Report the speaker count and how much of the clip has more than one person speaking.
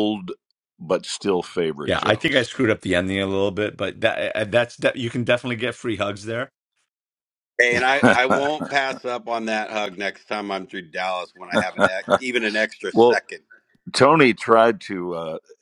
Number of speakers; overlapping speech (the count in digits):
3, about 5%